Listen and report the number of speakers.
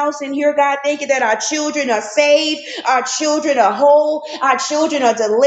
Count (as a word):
one